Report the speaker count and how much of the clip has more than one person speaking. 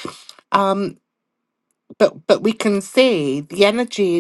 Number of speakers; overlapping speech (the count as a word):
one, no overlap